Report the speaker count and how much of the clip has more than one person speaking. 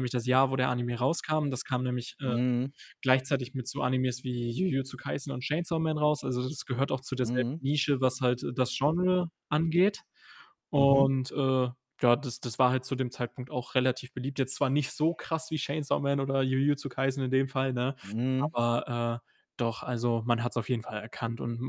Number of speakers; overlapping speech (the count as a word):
two, about 4%